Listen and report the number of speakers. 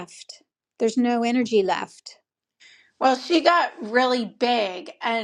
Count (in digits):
2